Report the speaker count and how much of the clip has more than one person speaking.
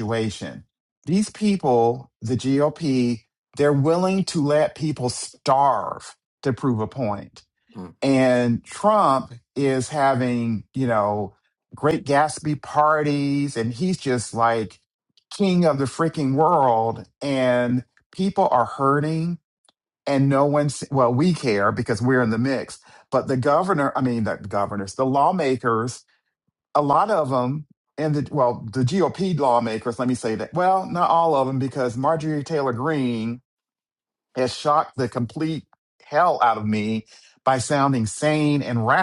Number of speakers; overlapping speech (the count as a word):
one, no overlap